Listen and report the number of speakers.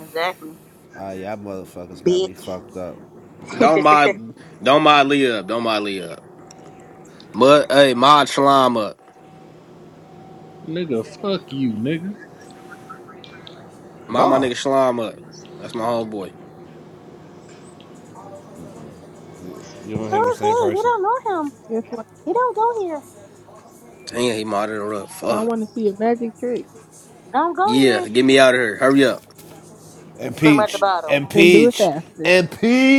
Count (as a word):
five